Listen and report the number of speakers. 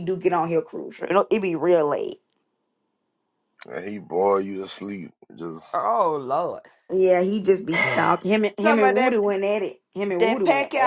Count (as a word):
three